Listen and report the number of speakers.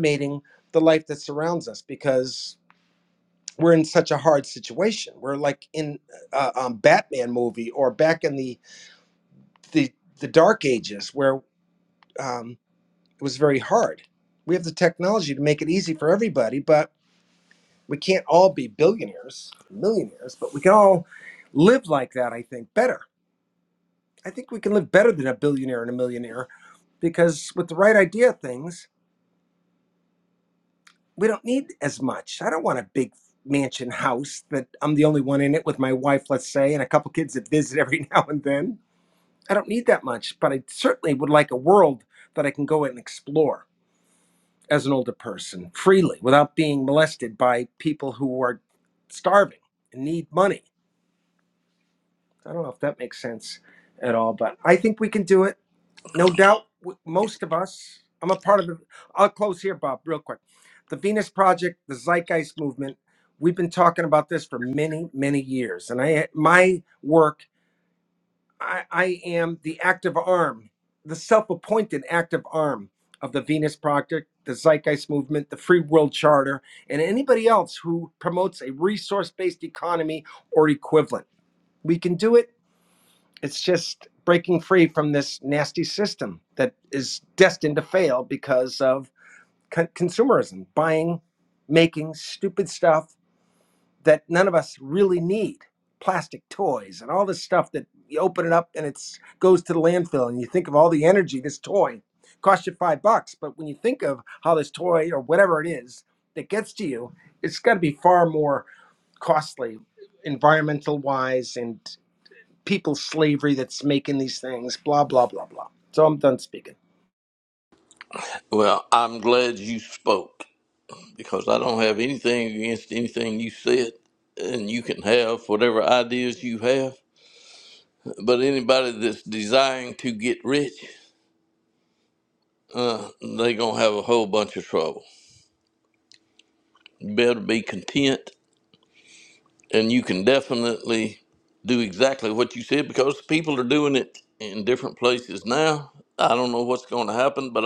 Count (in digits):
2